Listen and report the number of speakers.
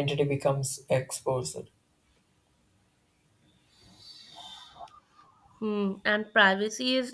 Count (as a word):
two